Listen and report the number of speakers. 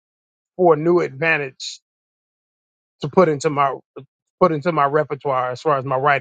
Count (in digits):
1